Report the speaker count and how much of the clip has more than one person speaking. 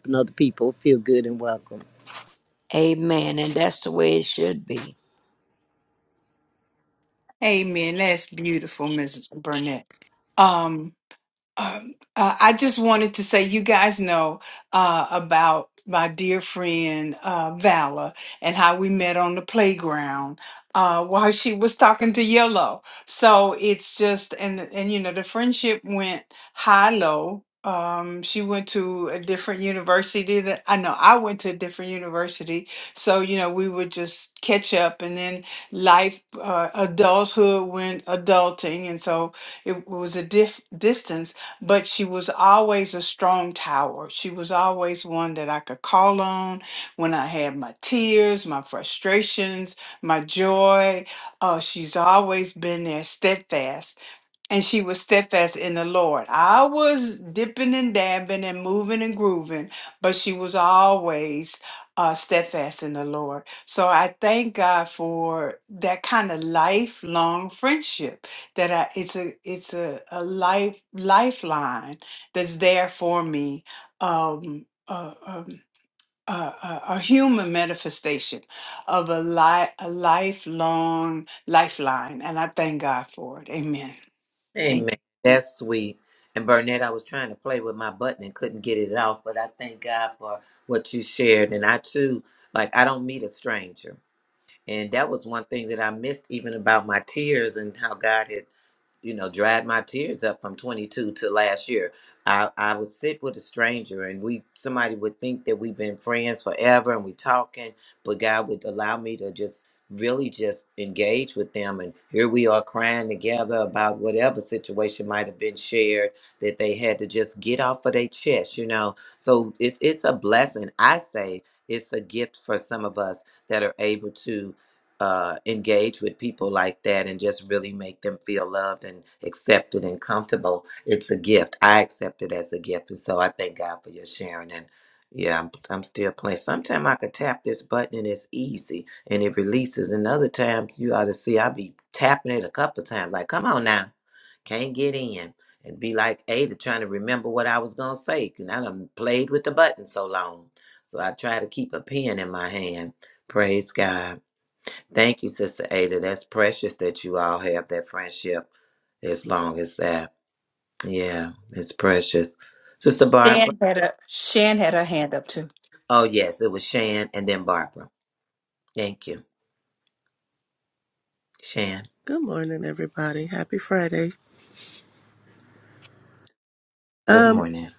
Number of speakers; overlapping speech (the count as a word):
five, under 1%